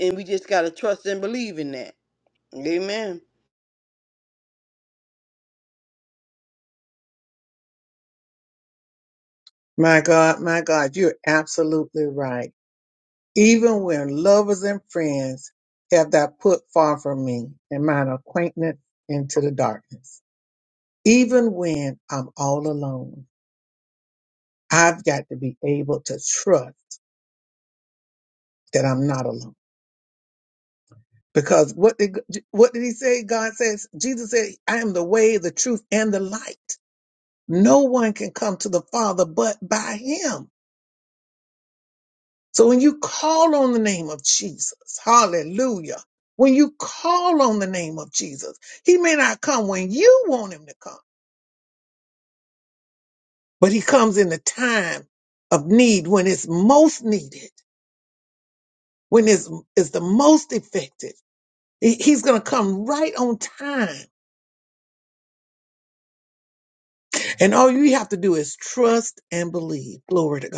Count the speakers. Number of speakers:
two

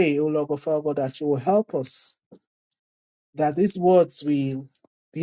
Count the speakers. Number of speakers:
one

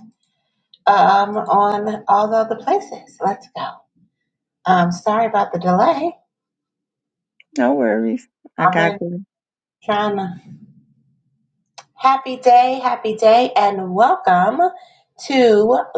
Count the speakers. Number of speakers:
two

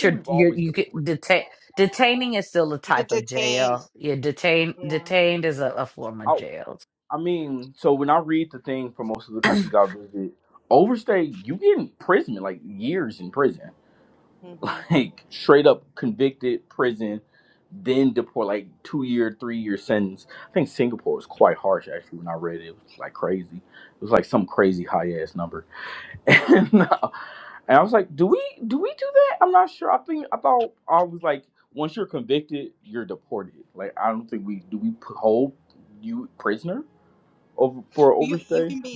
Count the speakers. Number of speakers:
three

